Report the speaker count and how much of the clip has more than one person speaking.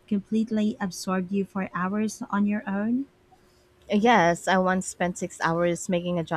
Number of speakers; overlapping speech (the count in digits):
2, no overlap